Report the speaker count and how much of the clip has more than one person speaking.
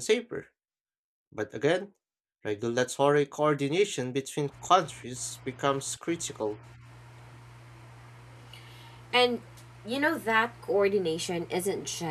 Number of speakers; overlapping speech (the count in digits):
2, no overlap